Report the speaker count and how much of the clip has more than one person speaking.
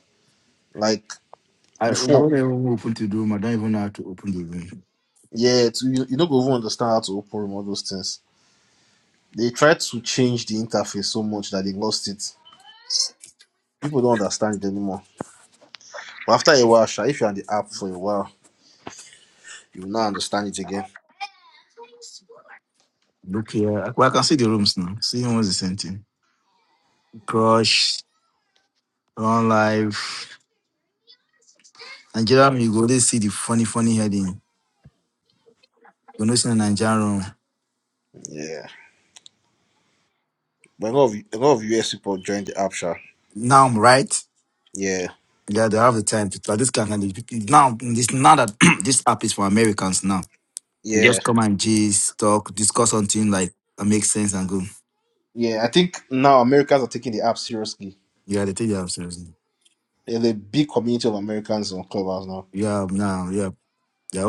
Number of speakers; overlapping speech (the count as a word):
two, about 1%